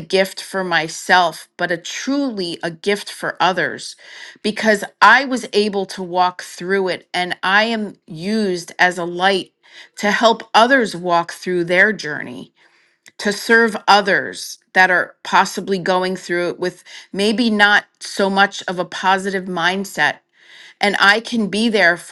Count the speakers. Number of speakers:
one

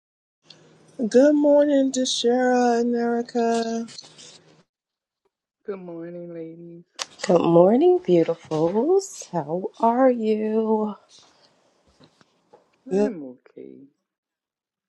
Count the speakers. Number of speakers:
three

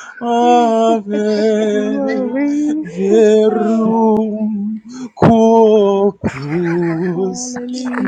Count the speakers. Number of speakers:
three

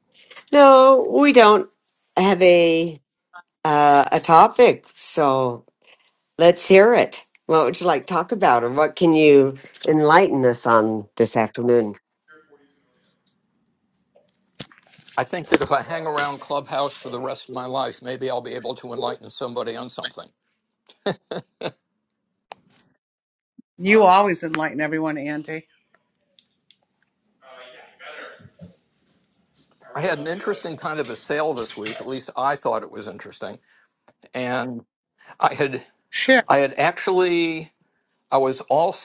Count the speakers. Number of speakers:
three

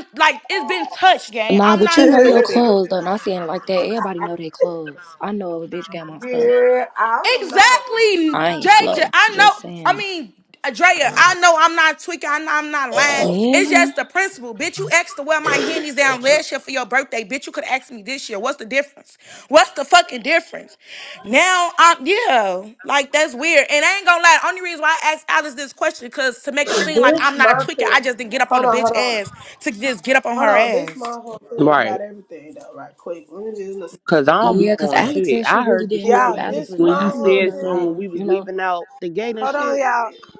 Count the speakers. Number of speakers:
four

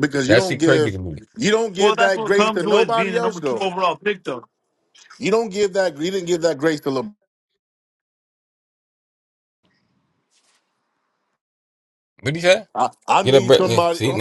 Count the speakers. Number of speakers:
three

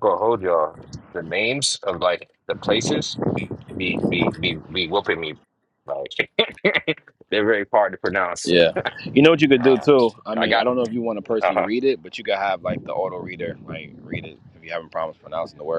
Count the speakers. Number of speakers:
two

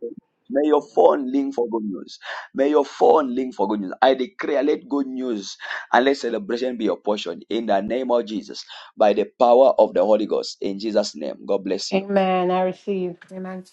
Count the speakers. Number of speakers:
two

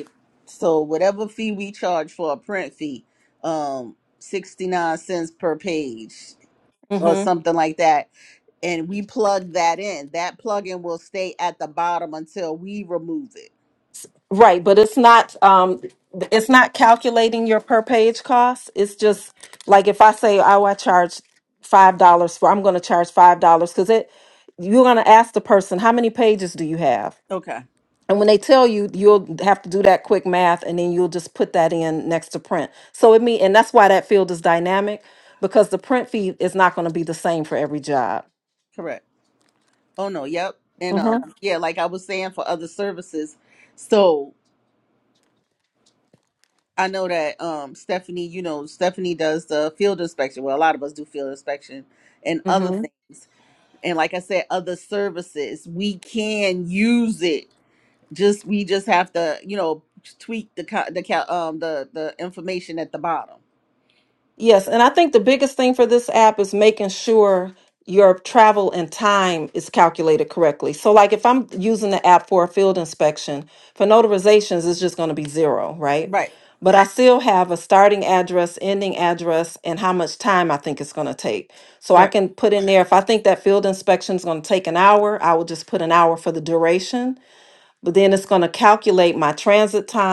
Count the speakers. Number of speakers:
two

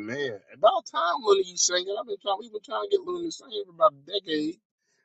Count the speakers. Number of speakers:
one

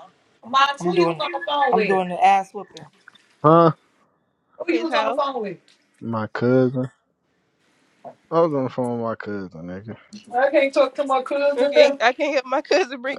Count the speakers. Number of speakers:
four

